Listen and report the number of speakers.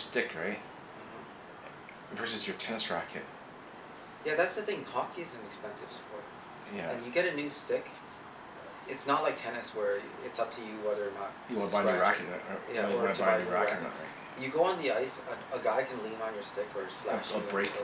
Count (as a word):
two